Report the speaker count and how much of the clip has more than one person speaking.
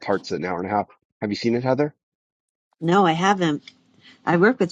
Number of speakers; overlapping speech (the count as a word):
two, no overlap